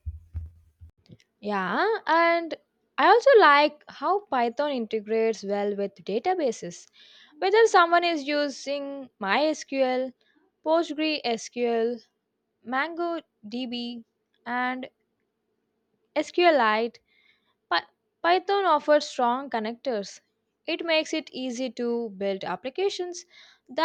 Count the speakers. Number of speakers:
1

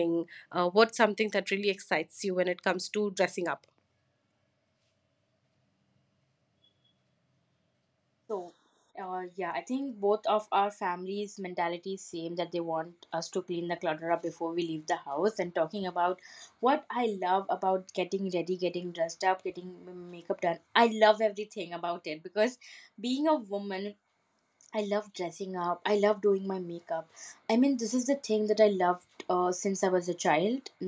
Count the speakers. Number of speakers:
2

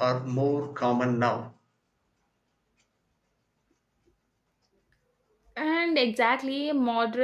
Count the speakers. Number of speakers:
2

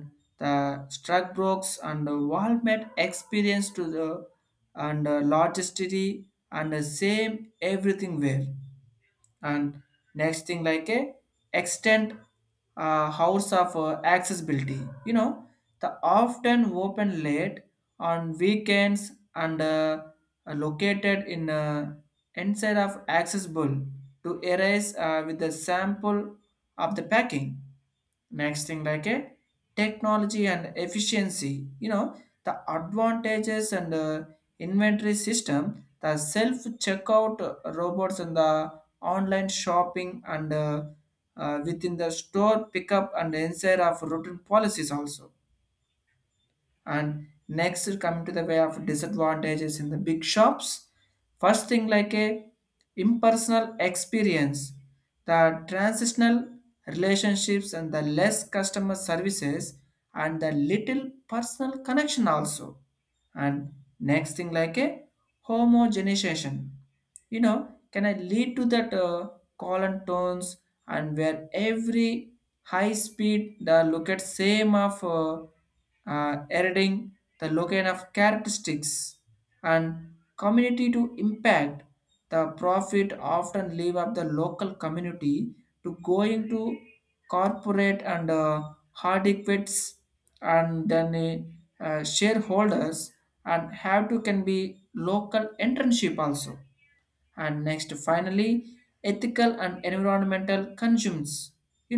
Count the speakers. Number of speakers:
1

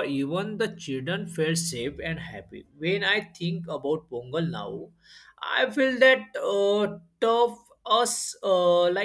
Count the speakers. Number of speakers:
1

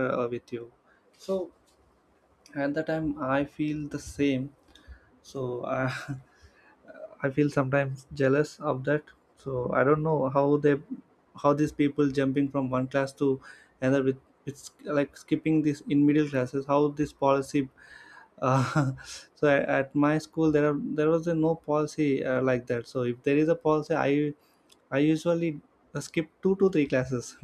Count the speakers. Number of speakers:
1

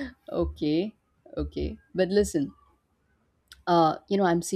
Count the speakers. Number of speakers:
1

